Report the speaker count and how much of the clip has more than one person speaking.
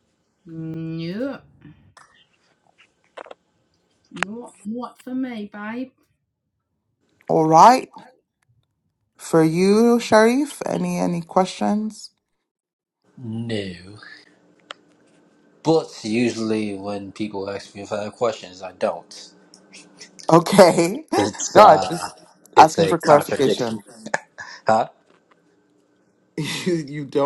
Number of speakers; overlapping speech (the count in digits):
3, about 6%